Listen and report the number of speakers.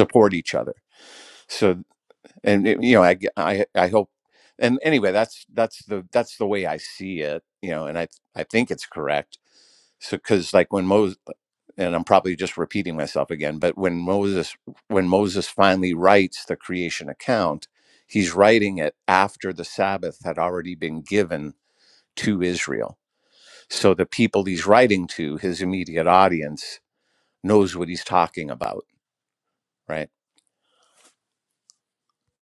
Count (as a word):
one